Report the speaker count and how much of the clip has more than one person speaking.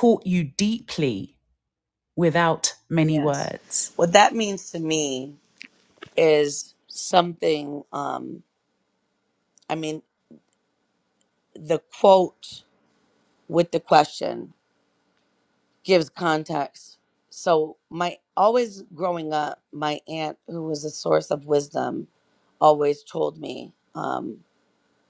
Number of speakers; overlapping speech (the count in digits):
2, about 1%